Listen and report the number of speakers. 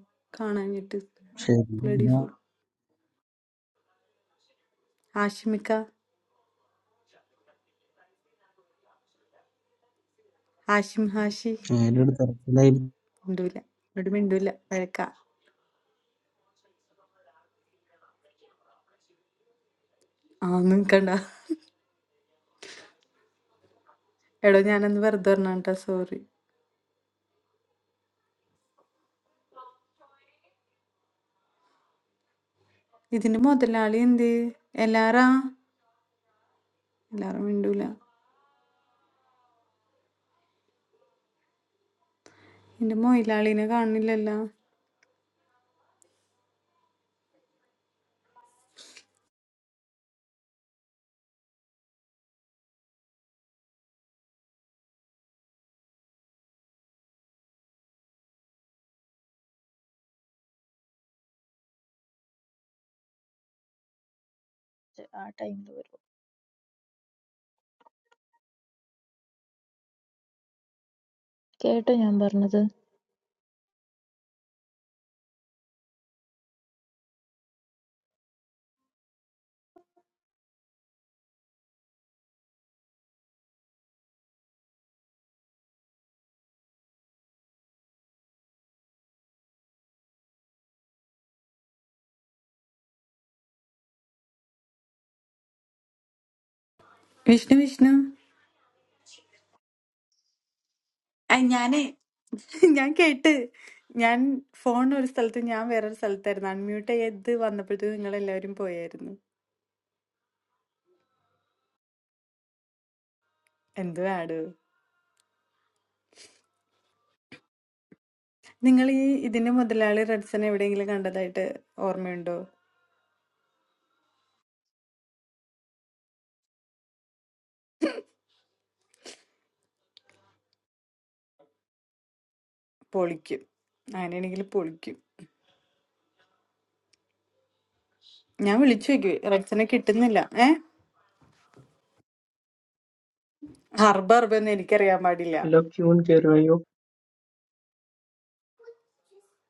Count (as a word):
four